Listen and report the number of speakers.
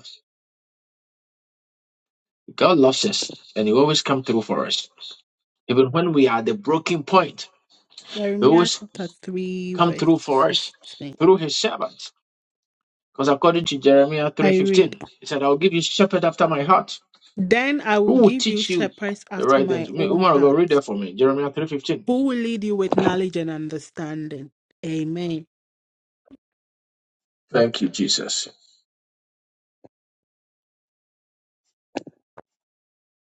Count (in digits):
2